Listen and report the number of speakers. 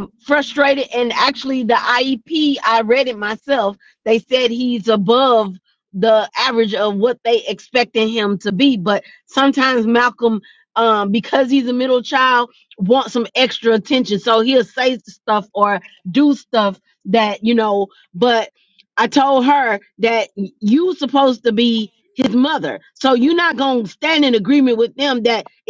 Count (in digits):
1